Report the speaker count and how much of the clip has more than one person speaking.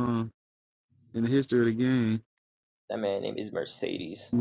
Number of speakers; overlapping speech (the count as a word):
two, no overlap